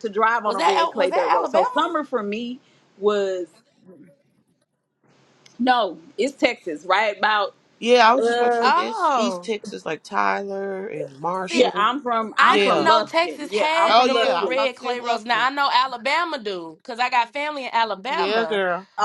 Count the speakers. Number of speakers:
3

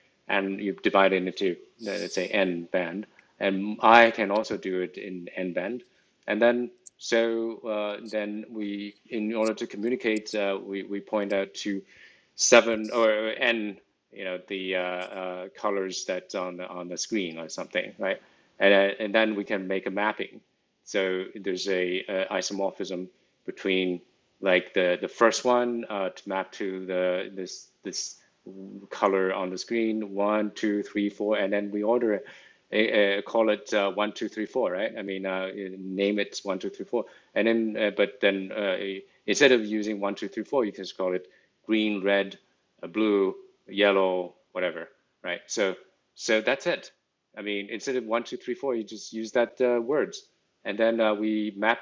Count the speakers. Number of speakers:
1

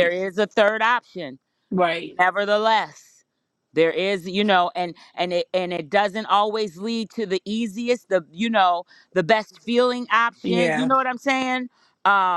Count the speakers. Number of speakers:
2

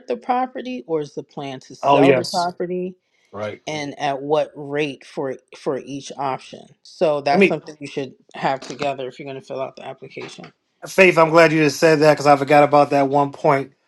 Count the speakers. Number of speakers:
2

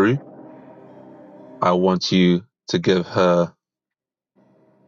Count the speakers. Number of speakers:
1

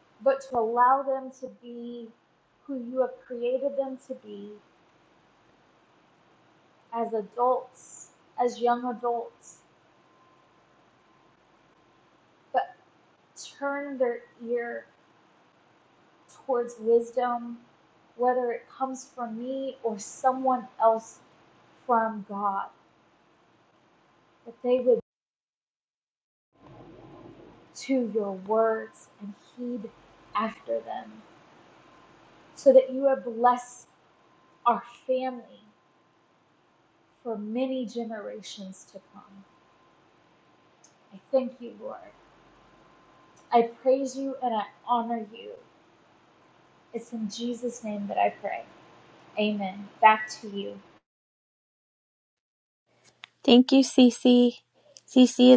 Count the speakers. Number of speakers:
2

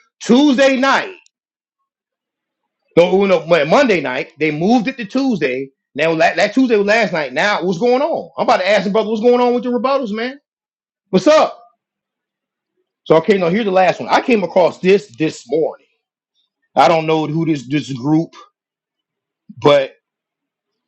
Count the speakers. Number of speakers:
1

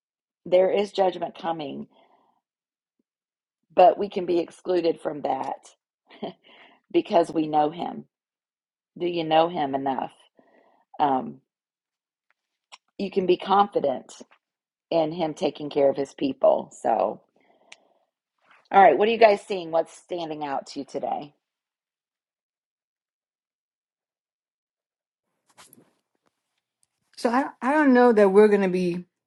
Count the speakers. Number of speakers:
2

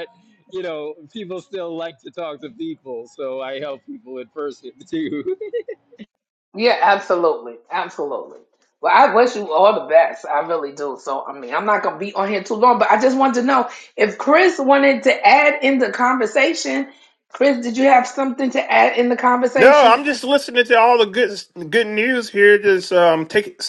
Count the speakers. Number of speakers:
3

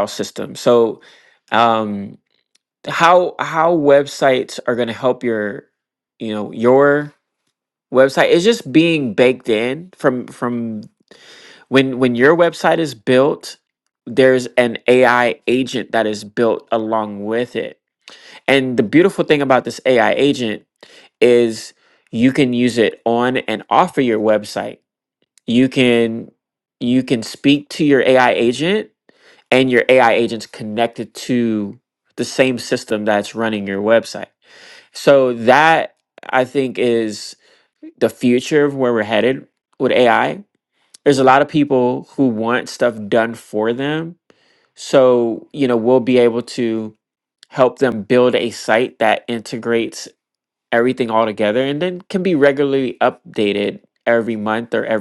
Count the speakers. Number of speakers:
1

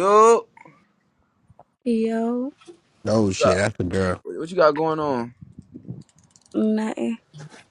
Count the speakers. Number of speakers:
3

